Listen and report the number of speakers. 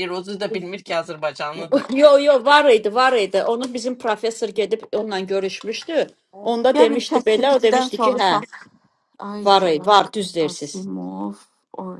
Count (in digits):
3